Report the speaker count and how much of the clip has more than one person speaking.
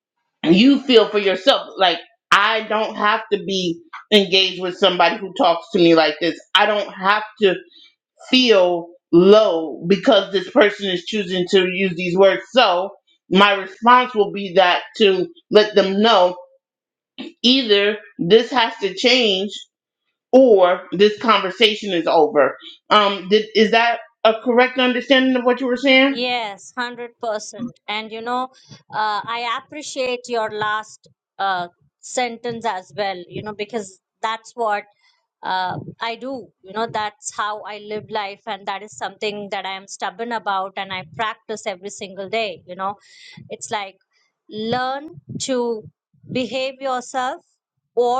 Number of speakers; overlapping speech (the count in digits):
2, under 1%